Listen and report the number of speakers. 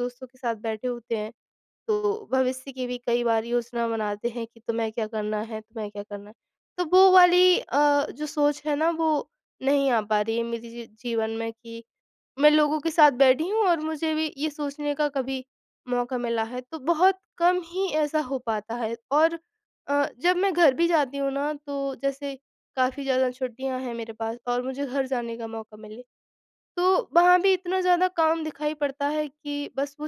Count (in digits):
1